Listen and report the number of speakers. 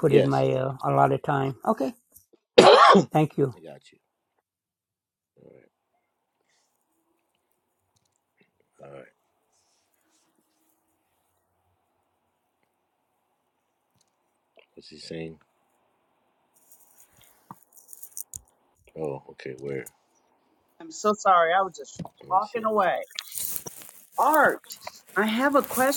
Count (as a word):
three